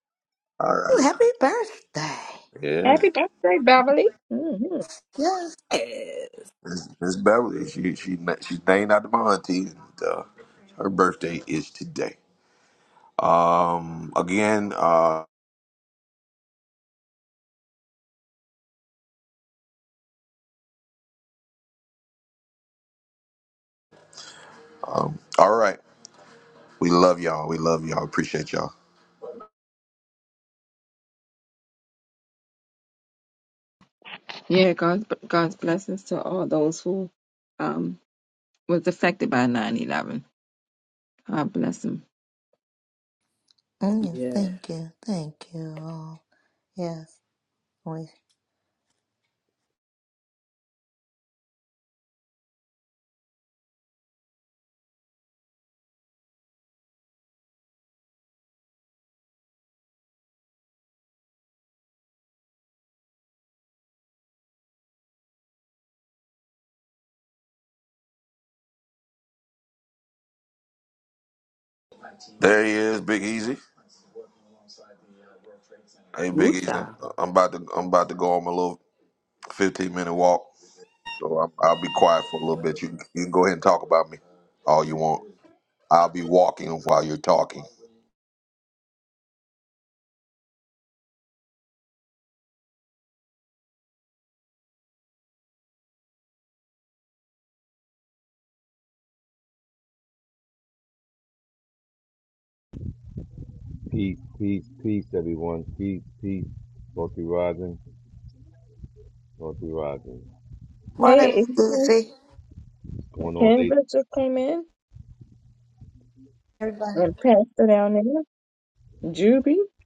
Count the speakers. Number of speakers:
five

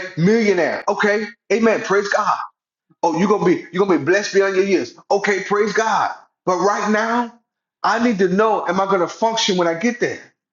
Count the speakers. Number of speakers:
one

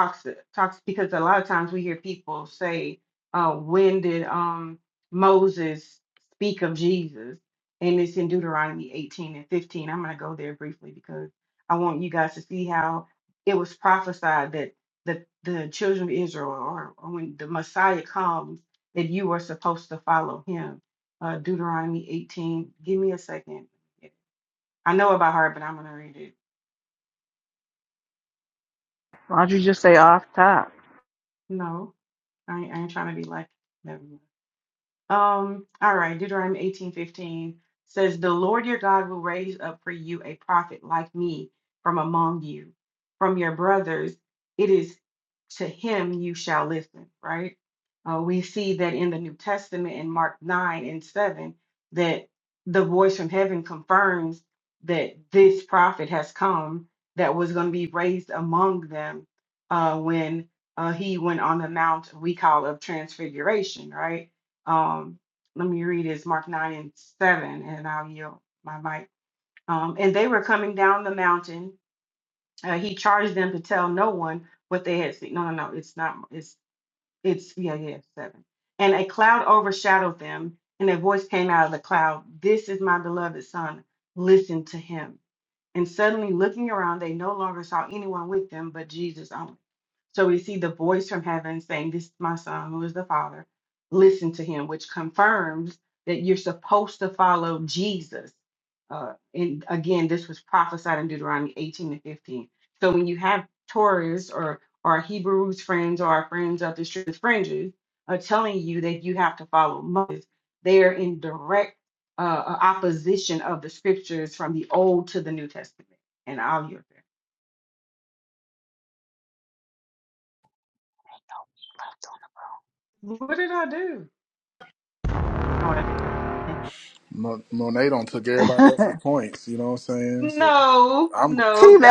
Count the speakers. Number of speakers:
three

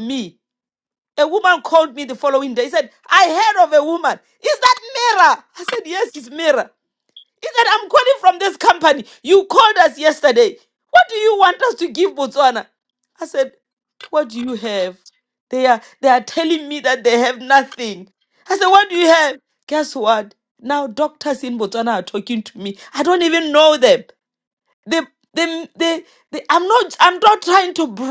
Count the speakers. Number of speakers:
one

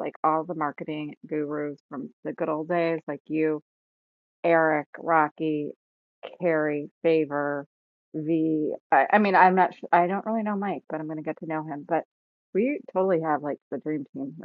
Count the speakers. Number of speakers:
one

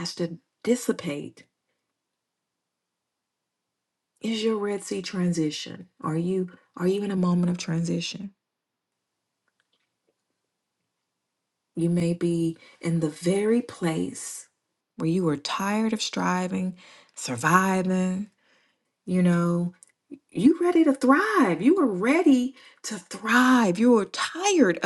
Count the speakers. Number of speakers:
one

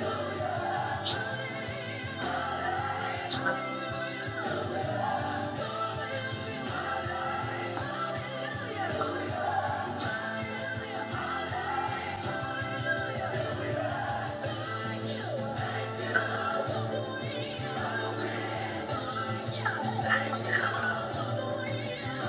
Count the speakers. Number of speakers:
zero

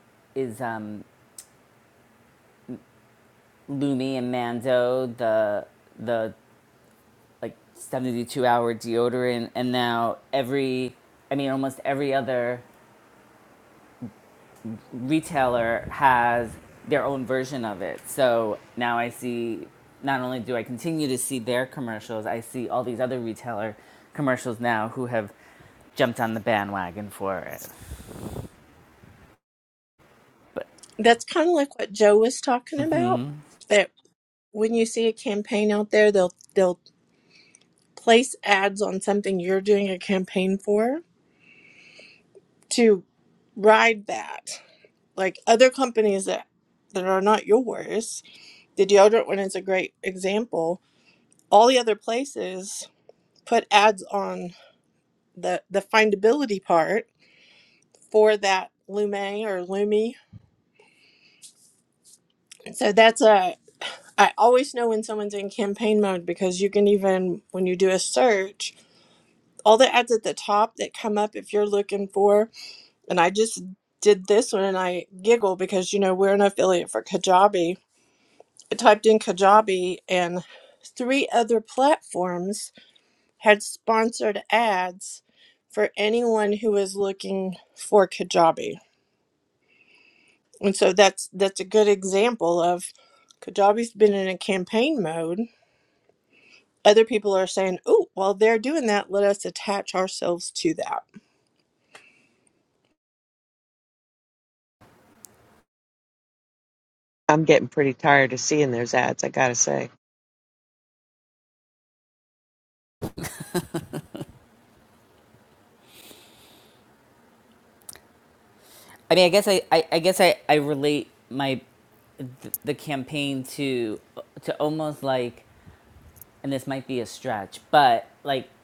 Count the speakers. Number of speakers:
three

